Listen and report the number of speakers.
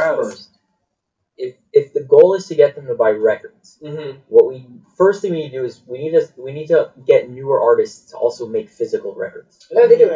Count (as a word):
two